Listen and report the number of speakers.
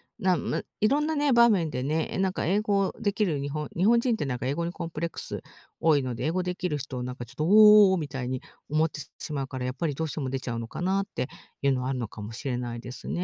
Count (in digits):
1